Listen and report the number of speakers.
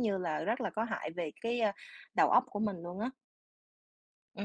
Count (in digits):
1